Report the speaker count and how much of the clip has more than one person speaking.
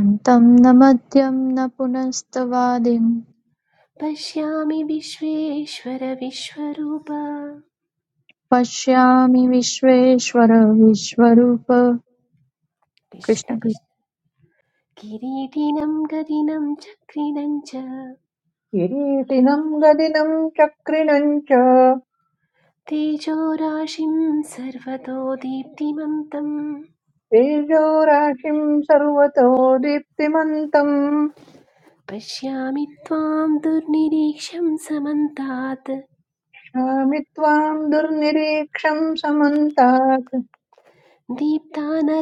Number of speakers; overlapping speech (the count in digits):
3, about 1%